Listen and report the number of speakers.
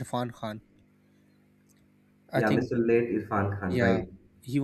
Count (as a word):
two